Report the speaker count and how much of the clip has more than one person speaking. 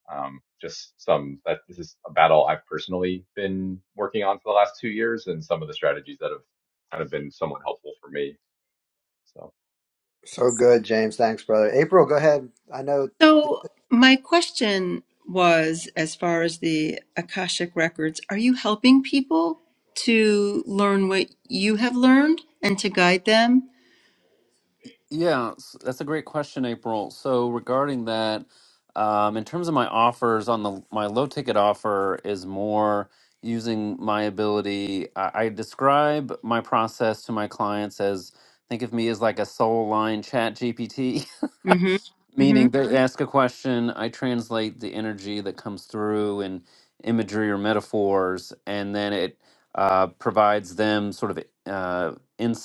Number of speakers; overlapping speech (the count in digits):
4, about 1%